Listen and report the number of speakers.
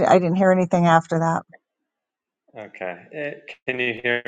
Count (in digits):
2